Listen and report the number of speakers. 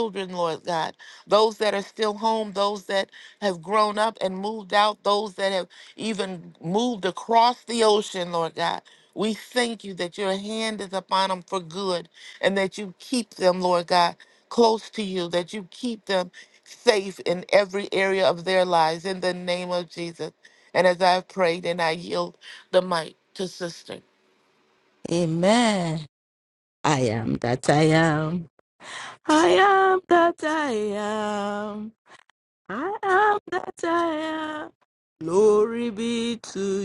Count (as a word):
two